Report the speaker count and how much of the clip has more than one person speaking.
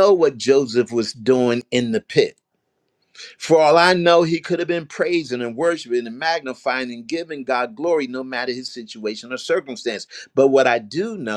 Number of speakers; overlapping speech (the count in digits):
1, no overlap